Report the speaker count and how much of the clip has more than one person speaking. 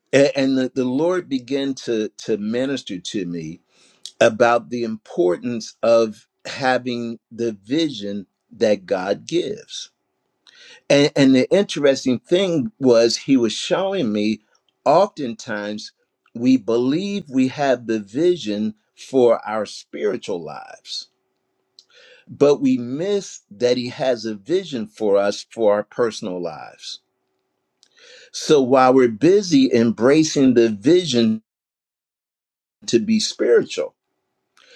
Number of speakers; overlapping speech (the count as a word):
one, no overlap